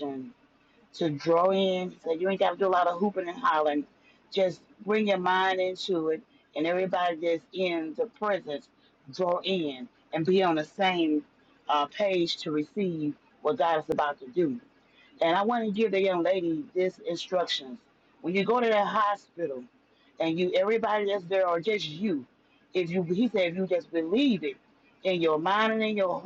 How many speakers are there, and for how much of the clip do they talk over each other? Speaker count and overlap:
1, no overlap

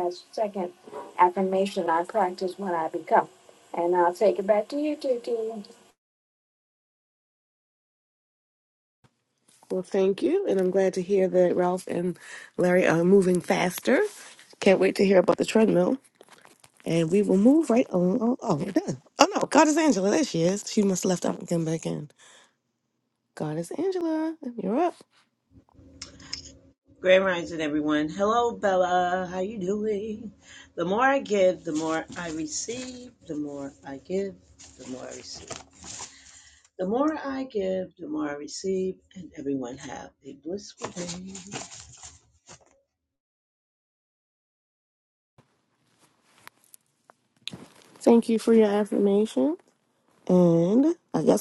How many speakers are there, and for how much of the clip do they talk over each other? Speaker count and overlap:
3, no overlap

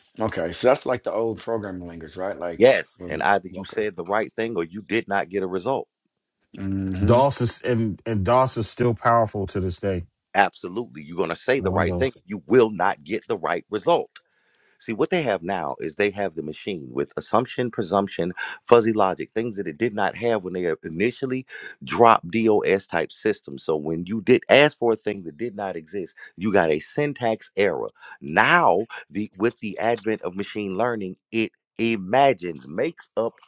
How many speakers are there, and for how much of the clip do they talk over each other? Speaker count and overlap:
3, about 5%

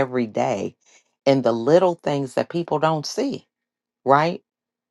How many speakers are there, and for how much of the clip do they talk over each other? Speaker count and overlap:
1, no overlap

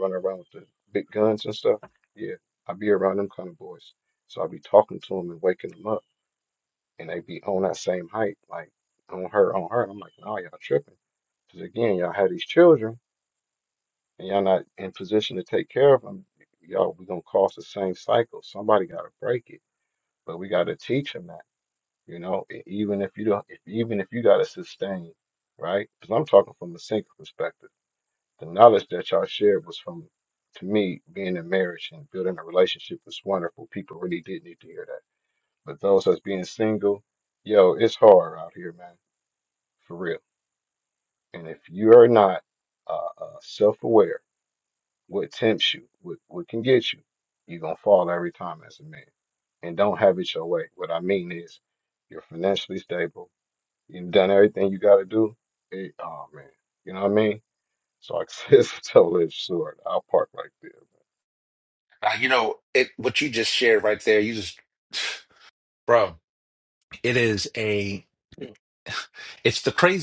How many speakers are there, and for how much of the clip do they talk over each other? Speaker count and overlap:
2, no overlap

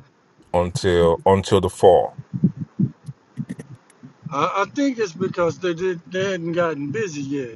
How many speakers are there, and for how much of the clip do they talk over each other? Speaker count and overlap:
2, no overlap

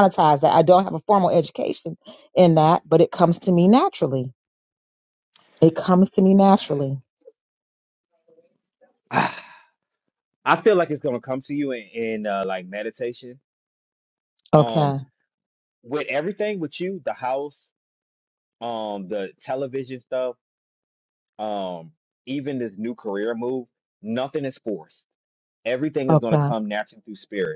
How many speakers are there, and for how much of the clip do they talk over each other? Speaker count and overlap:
2, about 3%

